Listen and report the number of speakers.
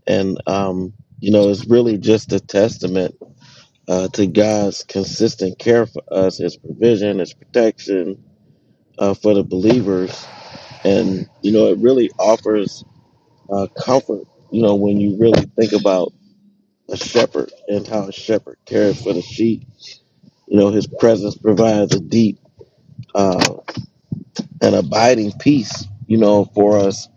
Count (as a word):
one